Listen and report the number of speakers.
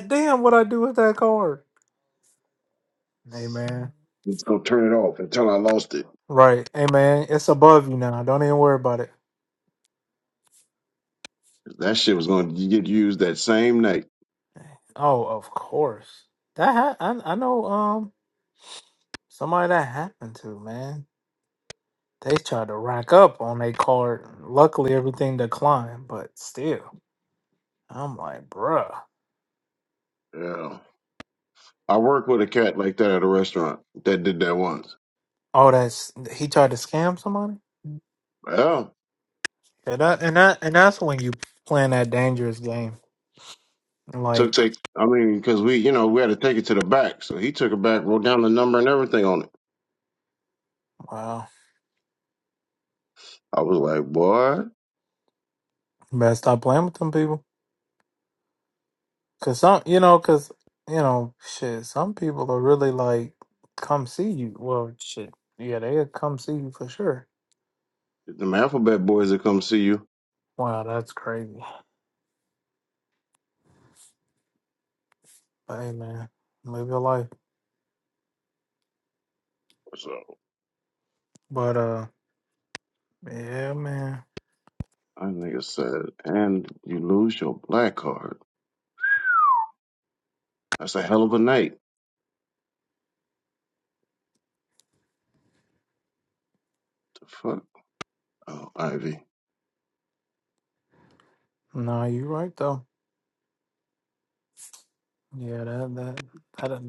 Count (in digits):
2